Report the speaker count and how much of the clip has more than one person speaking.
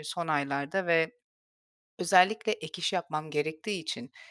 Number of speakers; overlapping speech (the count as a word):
one, no overlap